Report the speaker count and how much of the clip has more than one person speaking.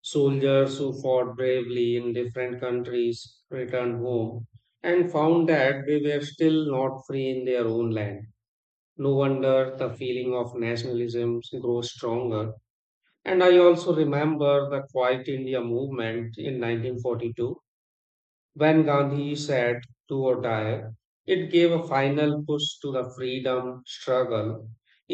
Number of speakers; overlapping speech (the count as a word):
one, no overlap